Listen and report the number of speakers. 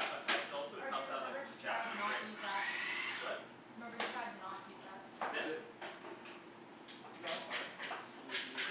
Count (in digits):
3